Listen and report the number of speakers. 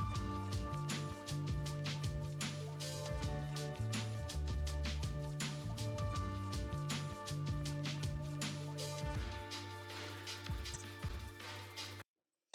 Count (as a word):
zero